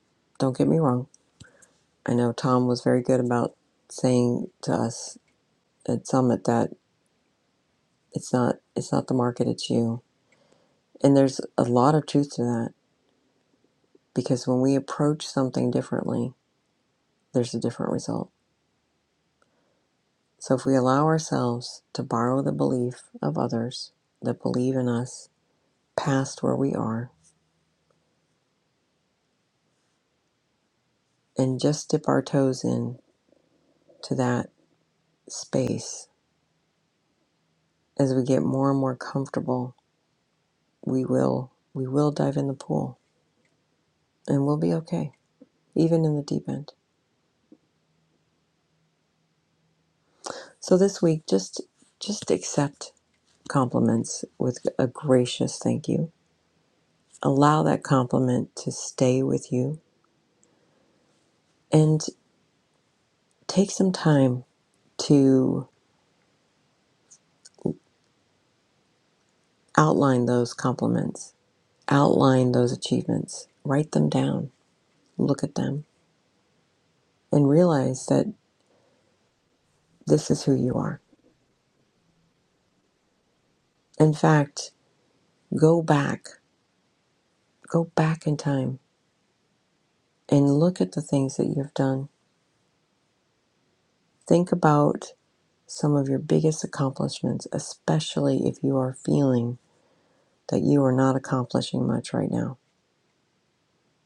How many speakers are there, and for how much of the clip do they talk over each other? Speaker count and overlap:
one, no overlap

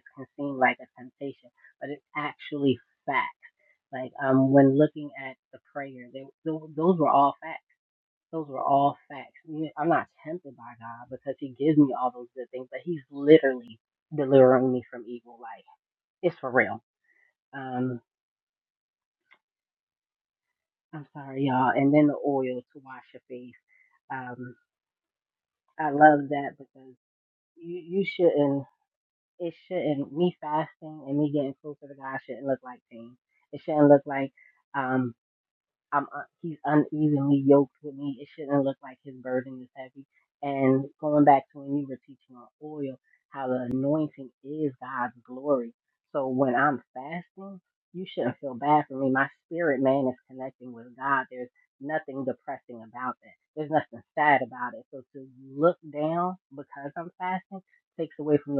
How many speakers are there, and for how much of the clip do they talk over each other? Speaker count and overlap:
one, no overlap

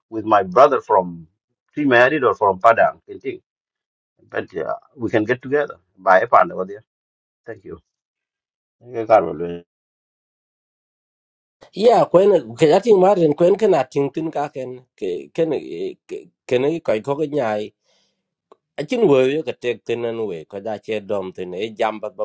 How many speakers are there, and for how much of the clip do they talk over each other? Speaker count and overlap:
two, no overlap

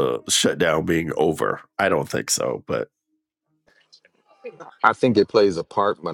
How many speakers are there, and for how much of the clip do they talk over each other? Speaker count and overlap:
two, no overlap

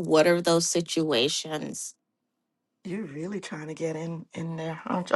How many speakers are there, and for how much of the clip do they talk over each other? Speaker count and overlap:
two, no overlap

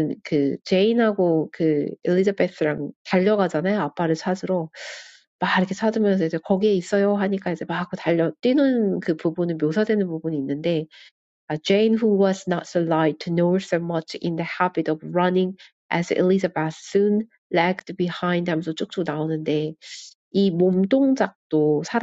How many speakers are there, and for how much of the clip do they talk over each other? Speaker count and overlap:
one, no overlap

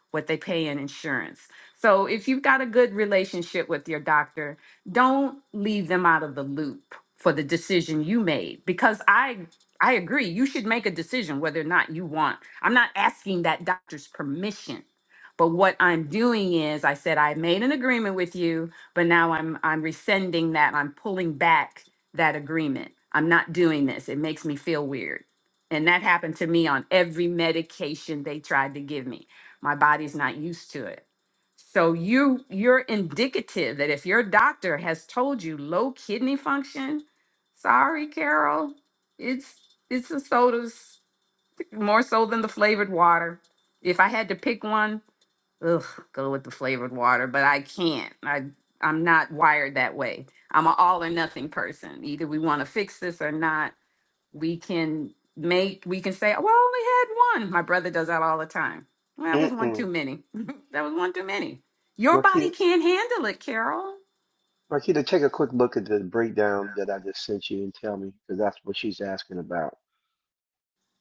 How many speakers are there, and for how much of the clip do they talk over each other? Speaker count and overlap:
two, about 1%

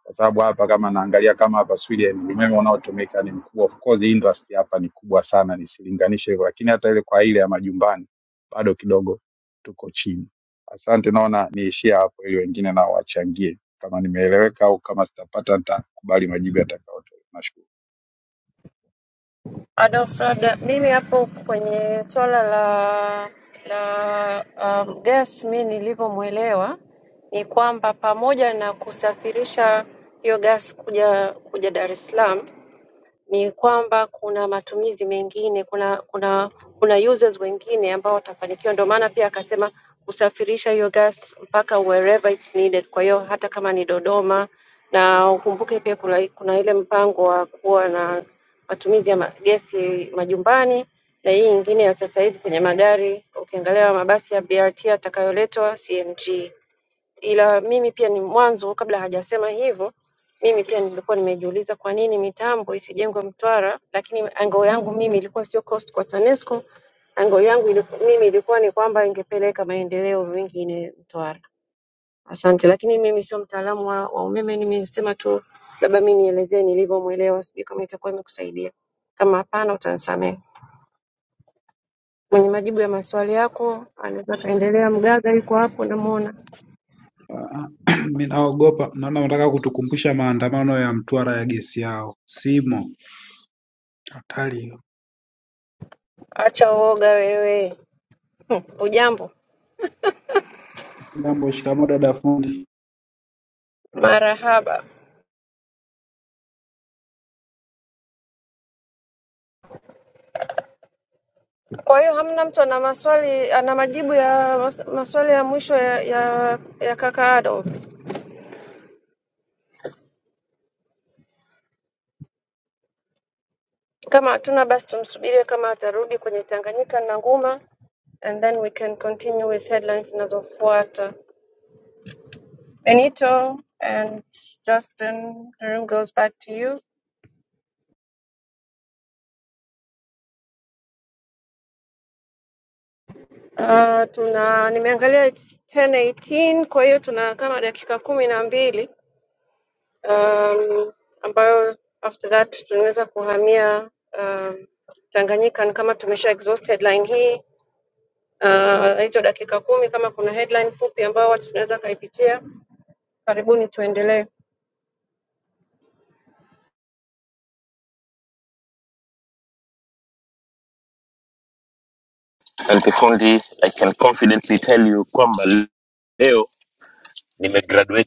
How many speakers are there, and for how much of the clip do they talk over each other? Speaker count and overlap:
four, no overlap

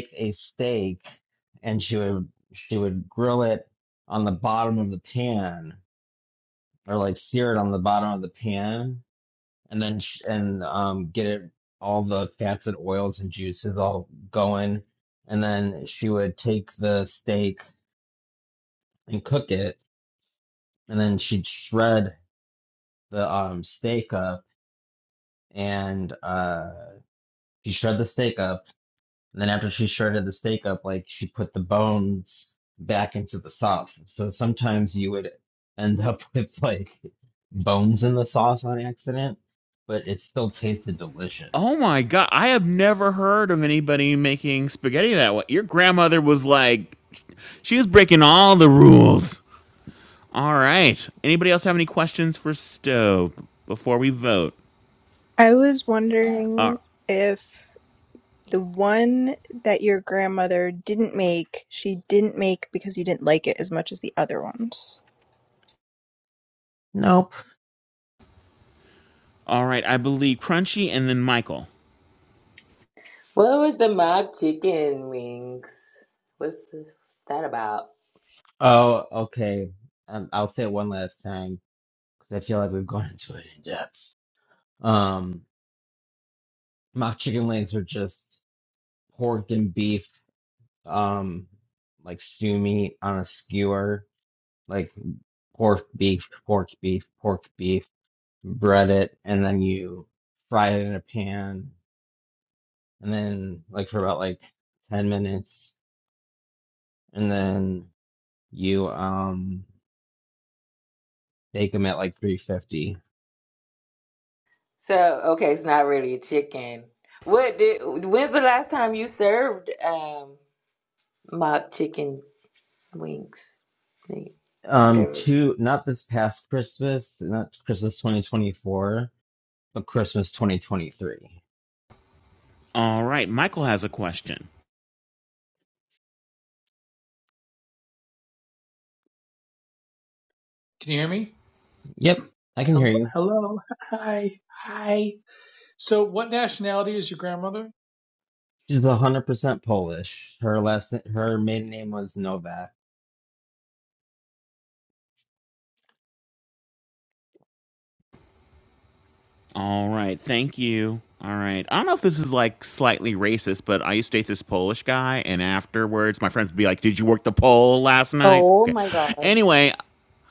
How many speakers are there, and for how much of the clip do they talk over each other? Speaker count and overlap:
six, about 1%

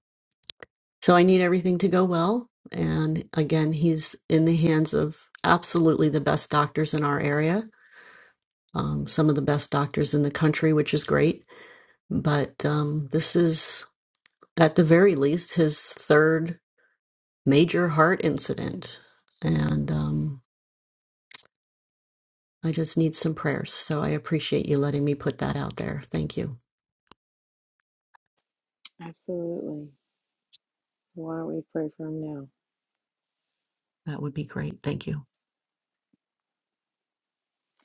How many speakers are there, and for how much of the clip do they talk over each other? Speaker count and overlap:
two, no overlap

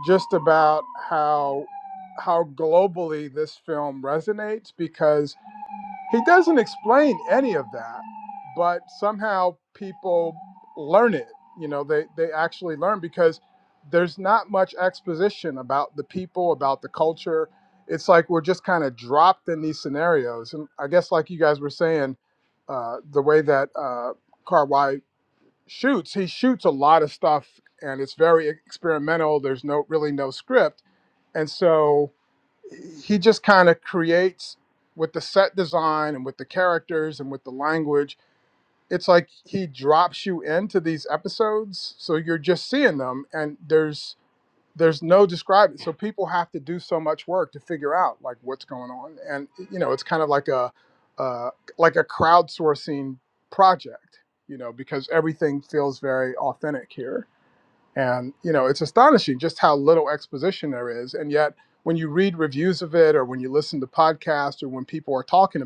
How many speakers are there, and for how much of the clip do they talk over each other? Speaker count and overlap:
one, no overlap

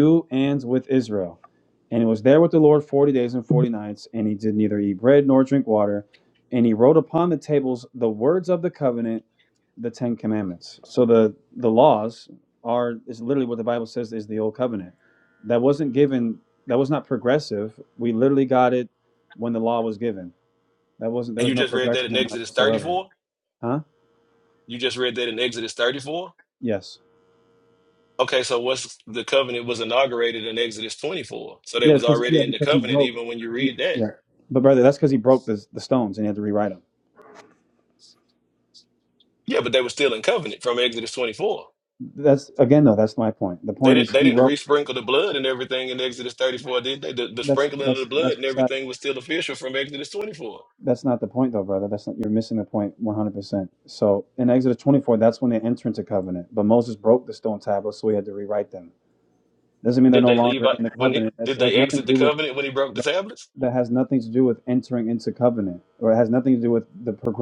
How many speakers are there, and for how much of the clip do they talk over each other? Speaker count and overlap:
two, about 11%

